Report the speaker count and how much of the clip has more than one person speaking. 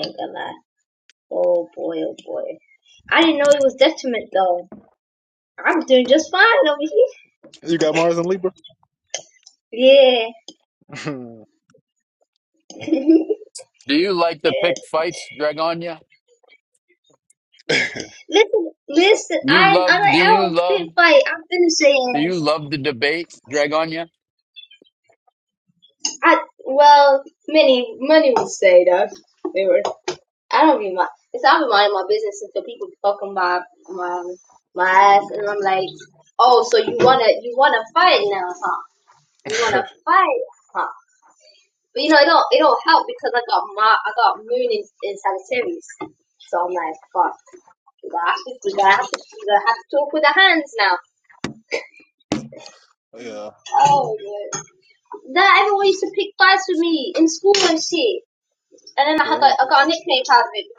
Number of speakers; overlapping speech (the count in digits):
3, about 3%